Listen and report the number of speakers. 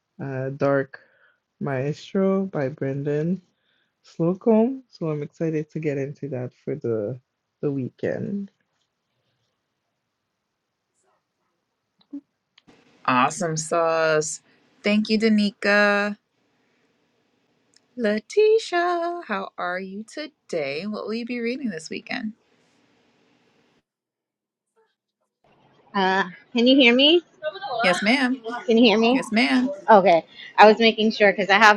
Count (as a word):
three